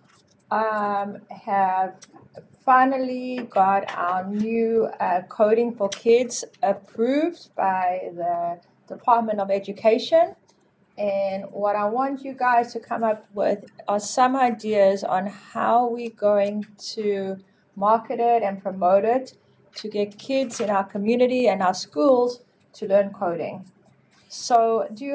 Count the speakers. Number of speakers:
1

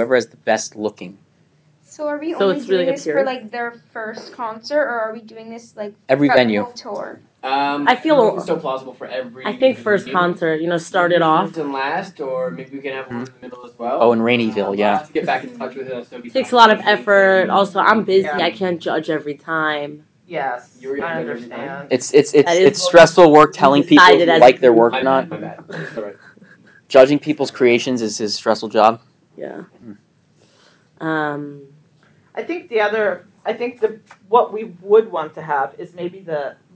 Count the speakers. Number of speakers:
5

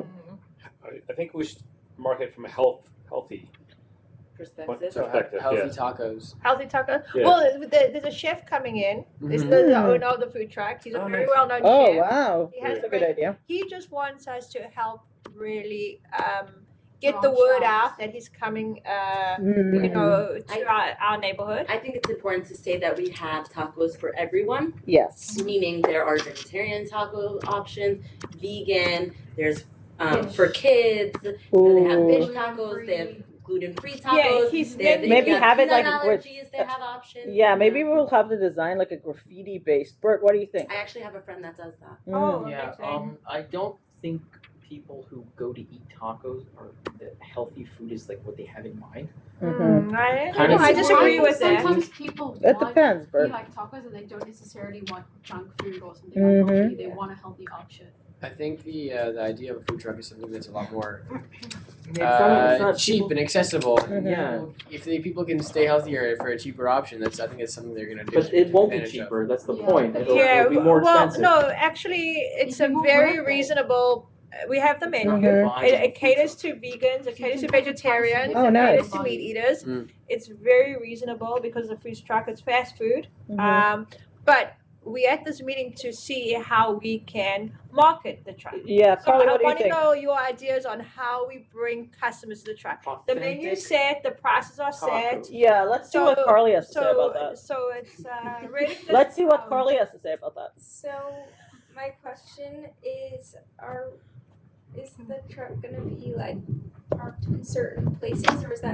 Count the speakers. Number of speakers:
8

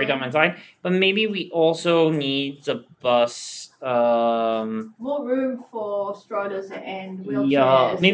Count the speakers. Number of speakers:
2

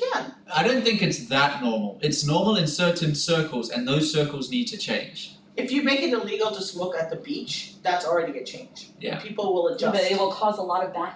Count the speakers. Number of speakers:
3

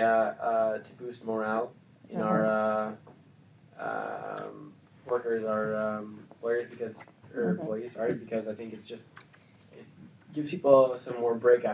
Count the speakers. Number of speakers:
1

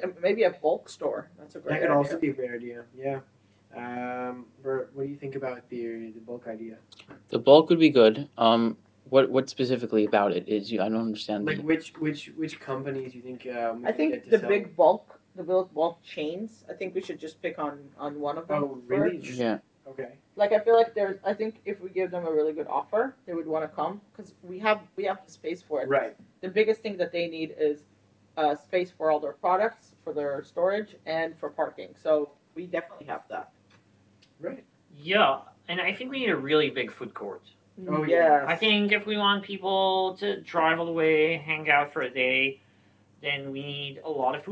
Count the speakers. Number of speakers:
4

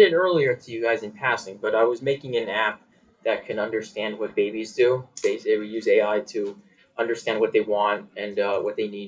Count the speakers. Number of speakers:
1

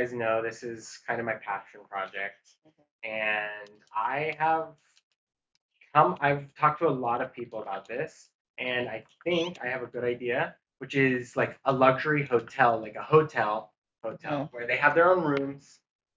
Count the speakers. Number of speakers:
1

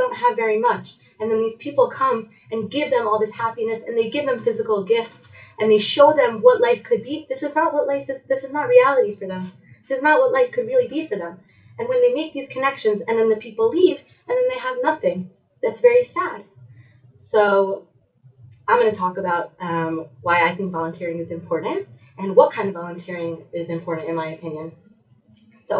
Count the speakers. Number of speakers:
1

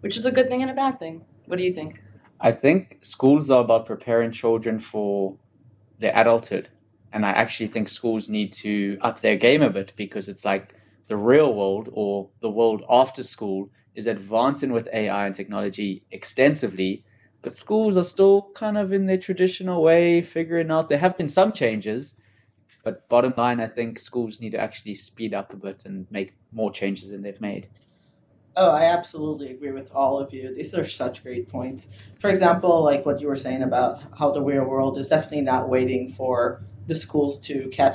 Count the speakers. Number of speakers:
3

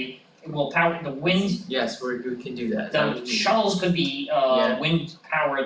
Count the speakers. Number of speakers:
2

